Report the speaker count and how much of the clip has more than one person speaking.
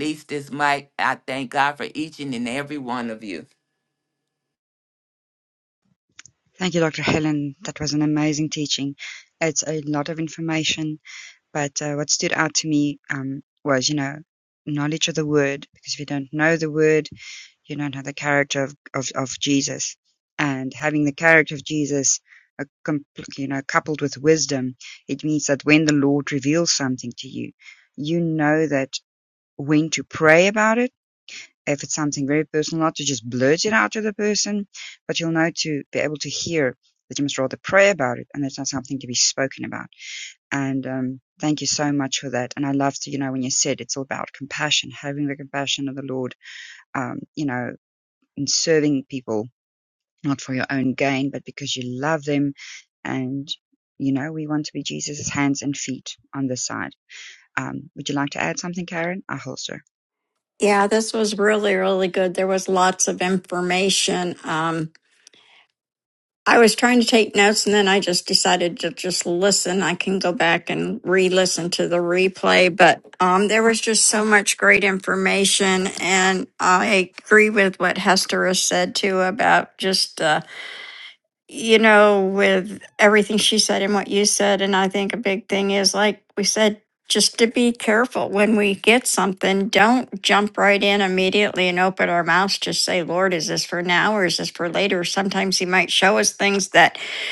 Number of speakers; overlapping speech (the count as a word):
three, no overlap